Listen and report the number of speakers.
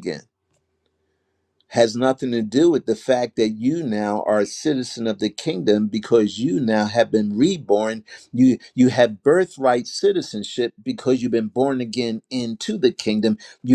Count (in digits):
1